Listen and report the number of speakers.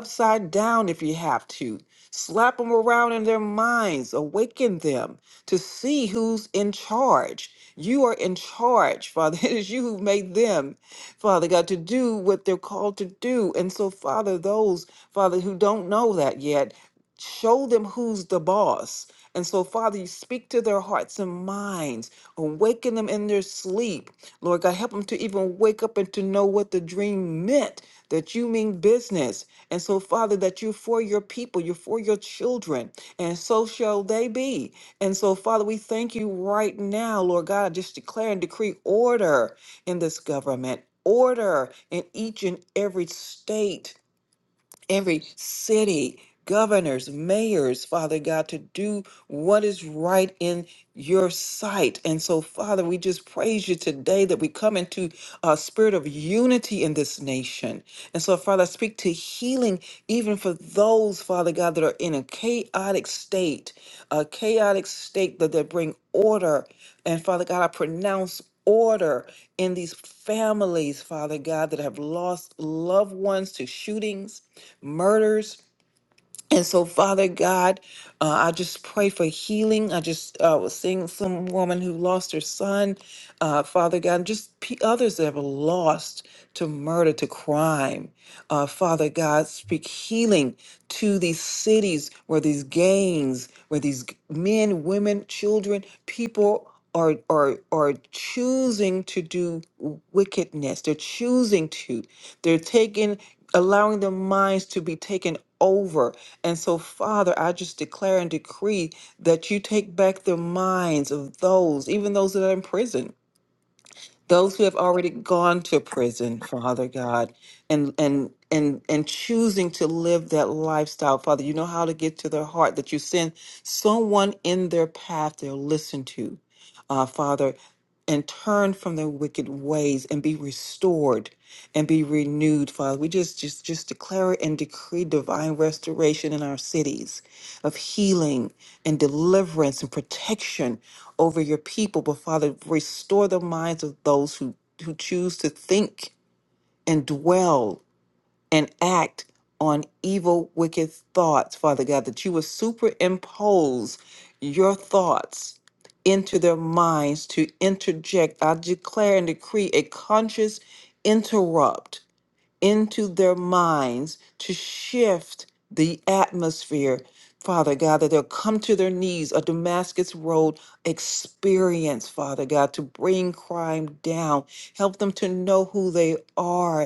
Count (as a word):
one